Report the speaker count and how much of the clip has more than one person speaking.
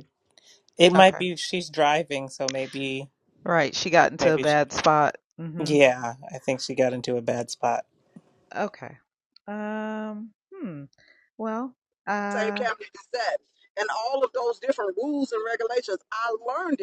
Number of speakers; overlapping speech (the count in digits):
3, about 7%